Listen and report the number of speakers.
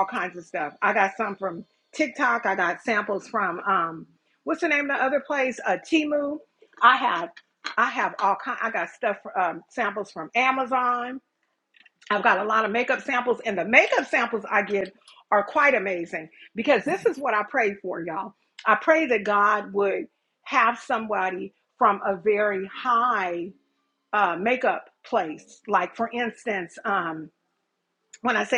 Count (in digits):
1